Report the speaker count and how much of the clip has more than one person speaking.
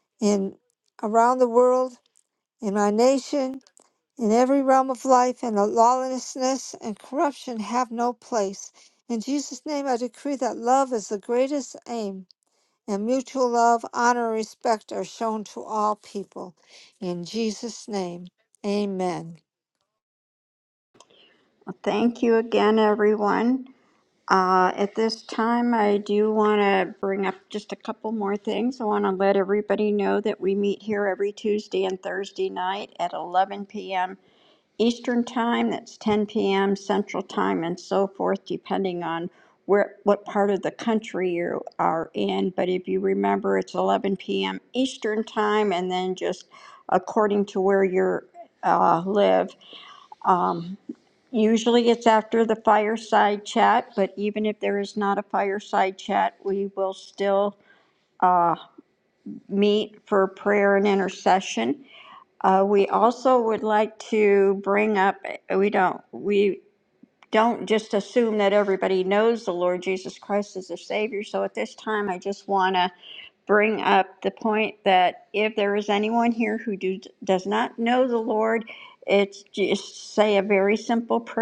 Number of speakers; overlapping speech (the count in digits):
2, no overlap